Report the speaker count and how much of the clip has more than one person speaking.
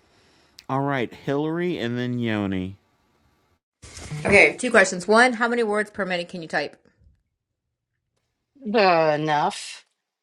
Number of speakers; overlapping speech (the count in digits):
3, no overlap